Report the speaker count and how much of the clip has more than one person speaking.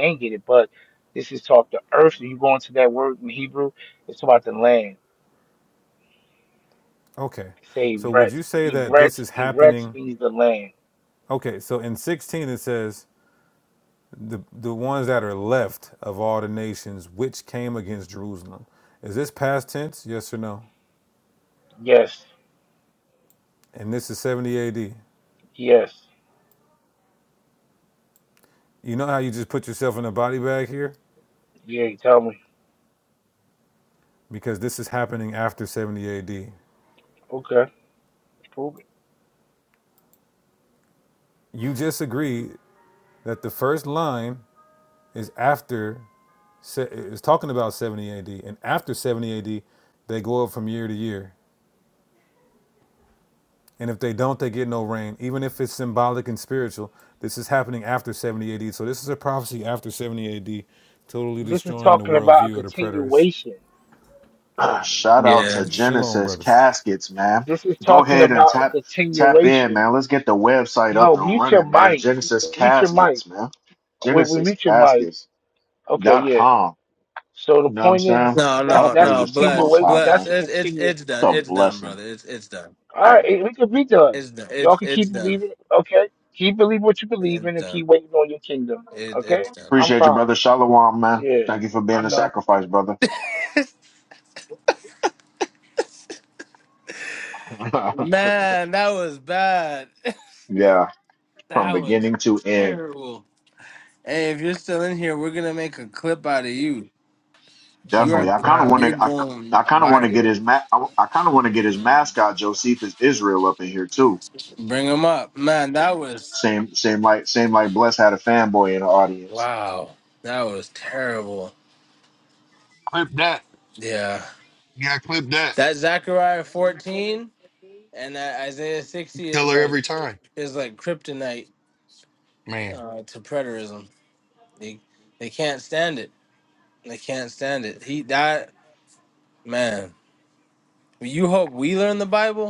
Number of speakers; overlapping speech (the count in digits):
5, about 13%